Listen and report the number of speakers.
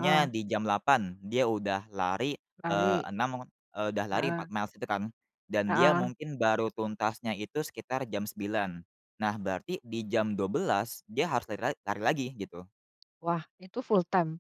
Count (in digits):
2